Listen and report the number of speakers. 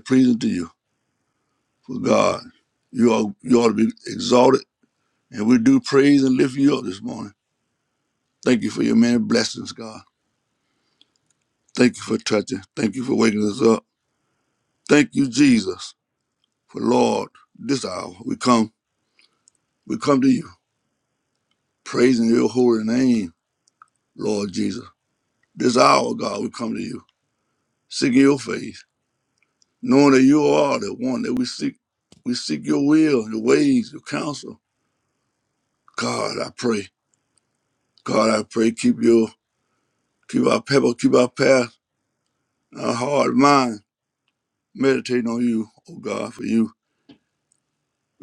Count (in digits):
1